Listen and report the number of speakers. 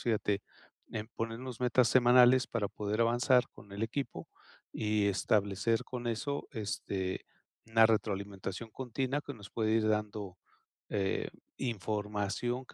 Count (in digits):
1